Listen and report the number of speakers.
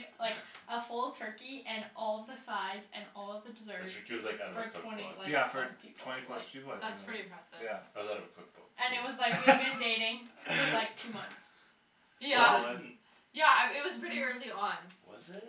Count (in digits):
4